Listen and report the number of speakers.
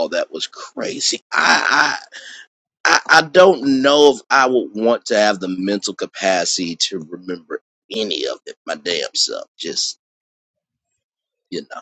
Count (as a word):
one